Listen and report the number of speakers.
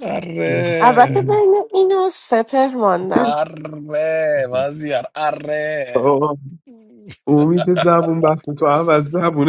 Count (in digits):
3